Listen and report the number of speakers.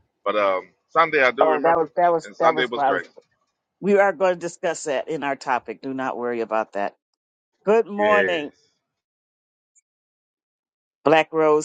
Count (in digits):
2